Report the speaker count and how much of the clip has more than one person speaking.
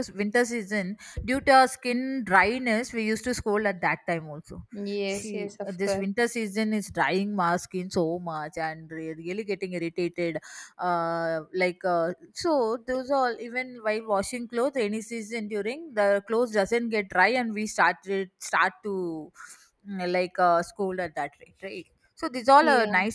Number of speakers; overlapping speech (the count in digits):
2, about 6%